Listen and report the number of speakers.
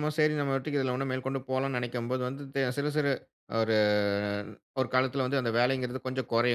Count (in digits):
1